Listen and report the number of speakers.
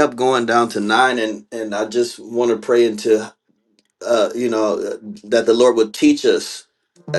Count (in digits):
1